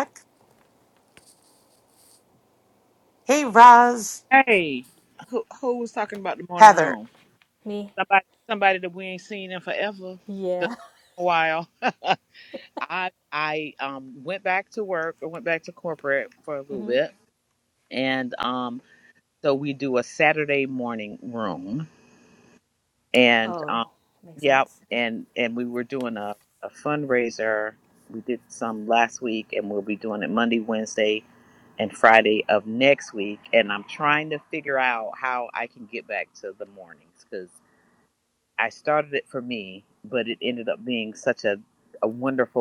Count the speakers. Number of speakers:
three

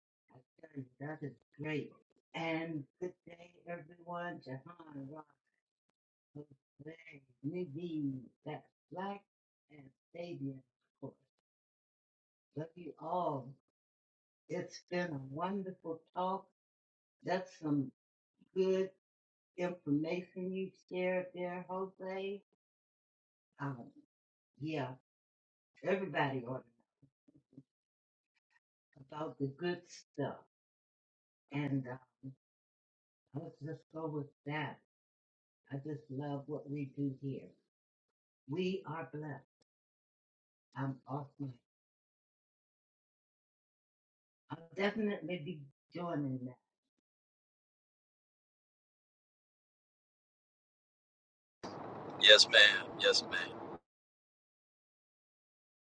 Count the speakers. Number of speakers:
two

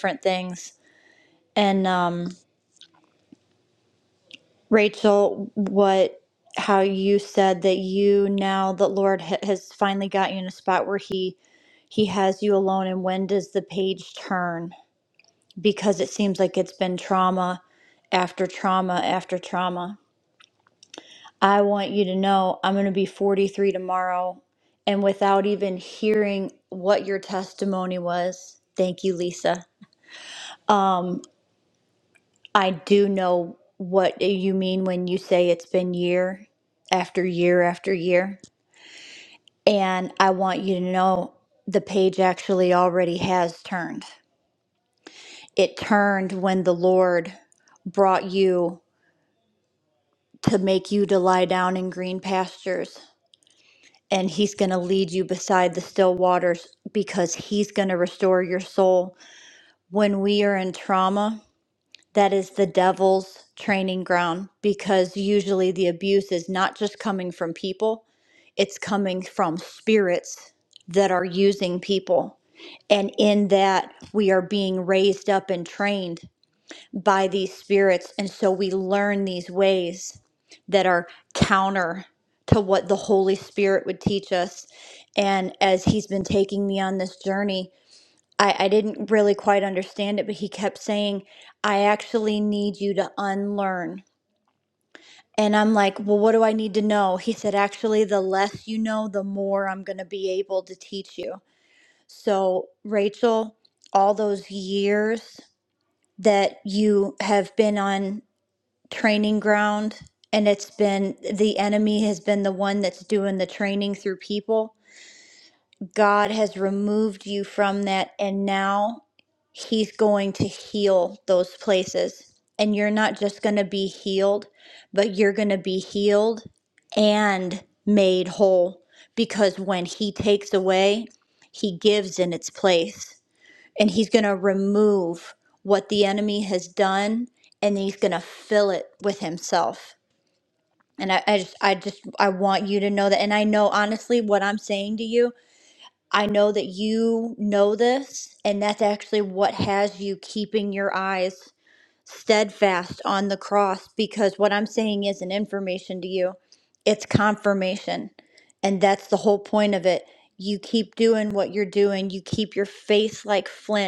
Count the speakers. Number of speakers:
one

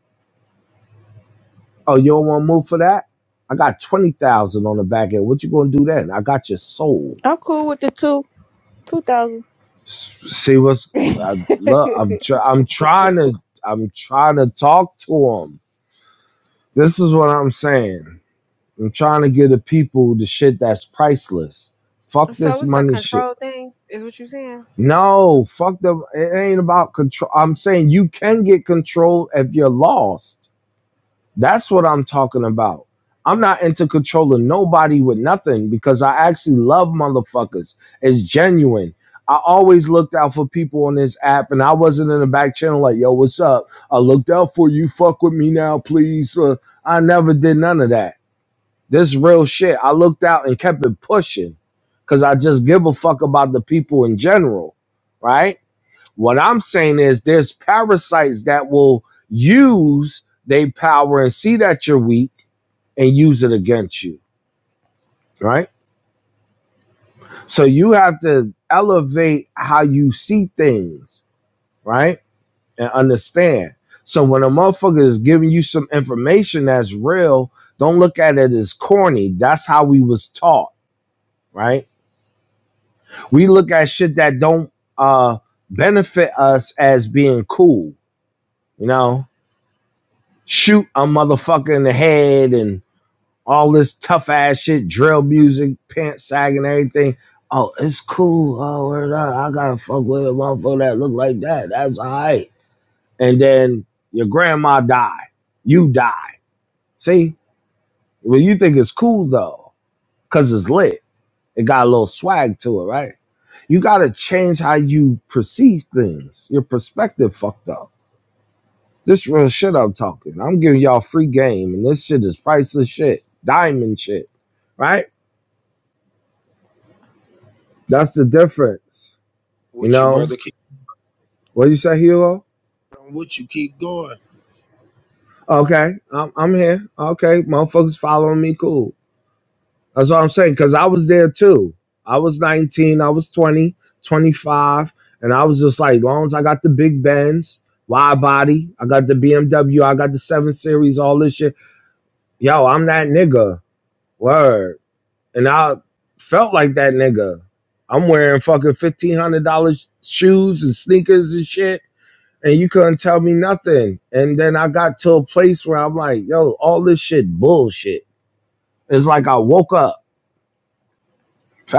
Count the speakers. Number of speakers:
four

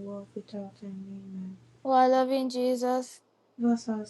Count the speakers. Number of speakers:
two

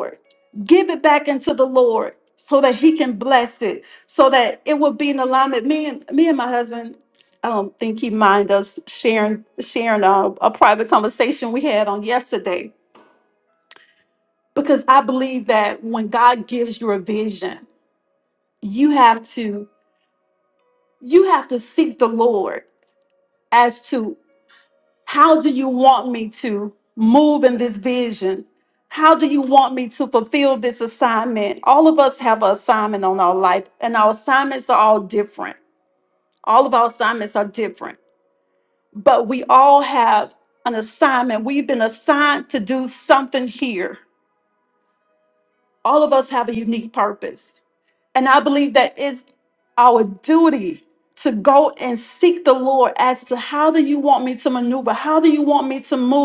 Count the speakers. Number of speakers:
one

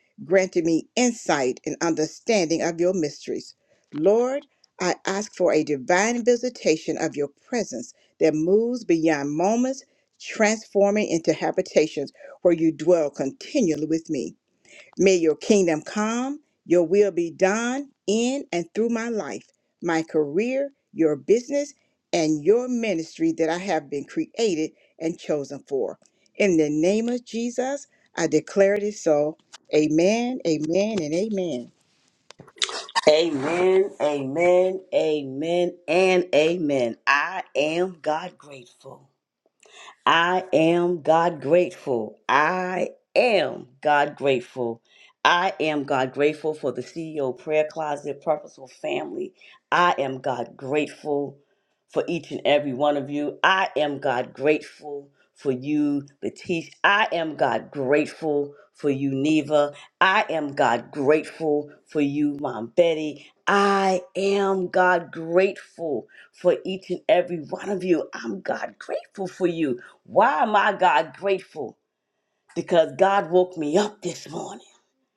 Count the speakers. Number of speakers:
two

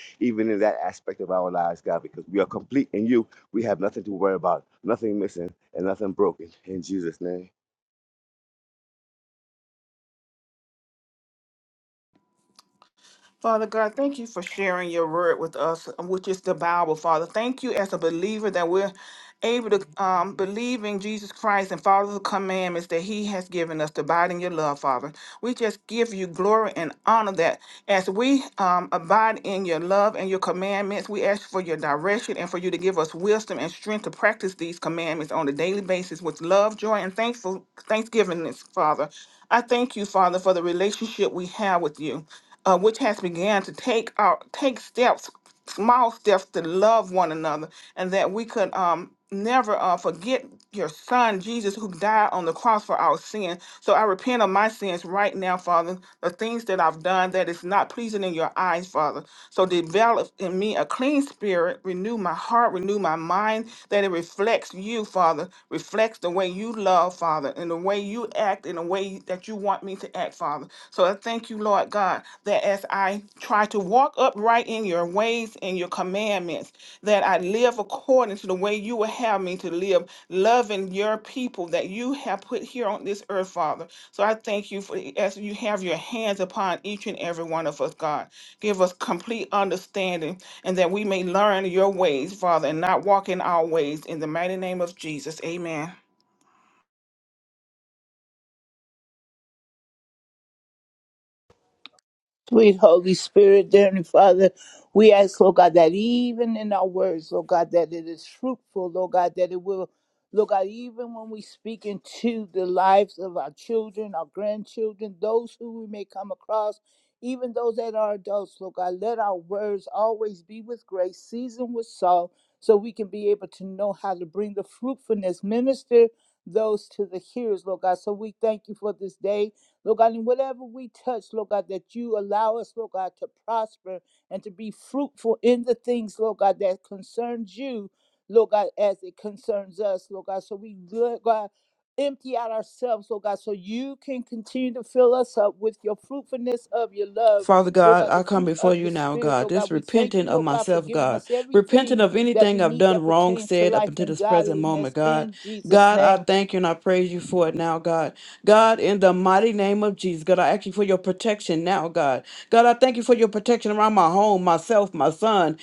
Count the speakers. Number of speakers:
four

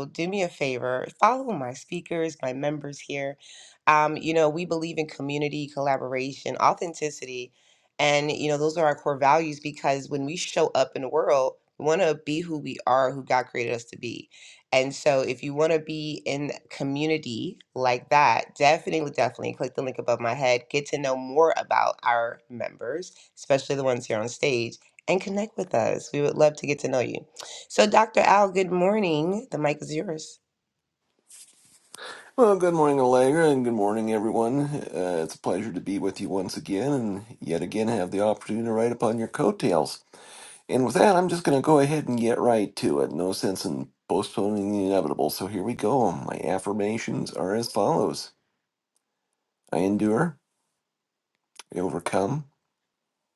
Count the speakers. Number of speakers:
two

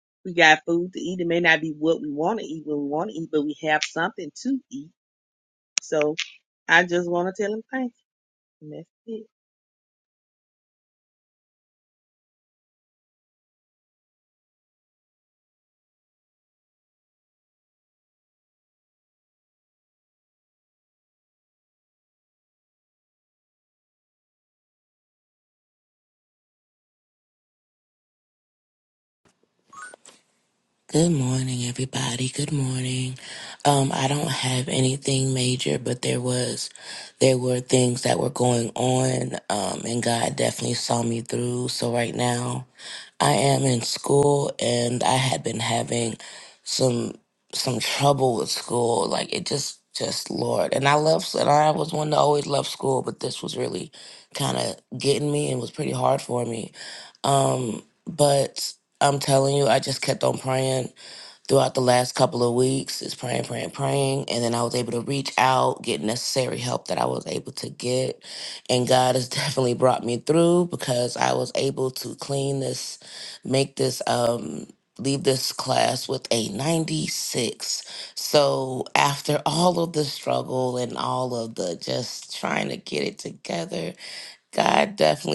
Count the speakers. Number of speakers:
two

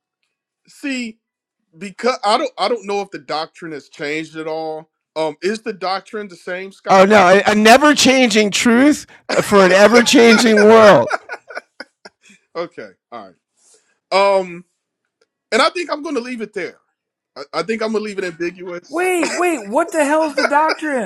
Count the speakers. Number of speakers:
three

